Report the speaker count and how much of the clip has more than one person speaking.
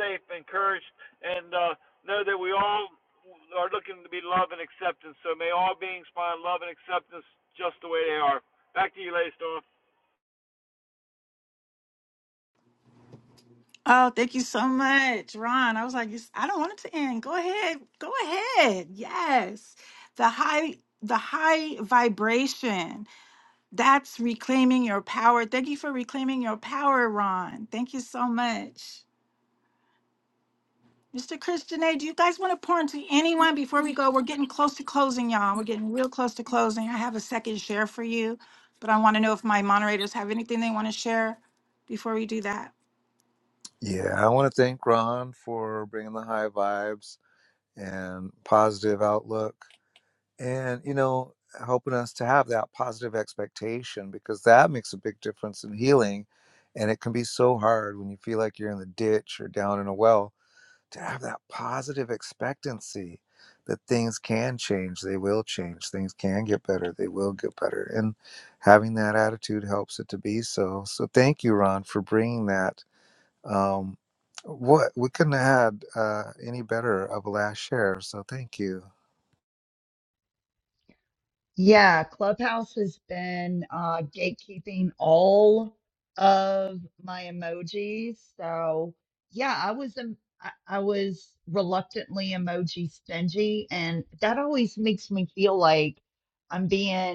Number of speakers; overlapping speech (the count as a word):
four, no overlap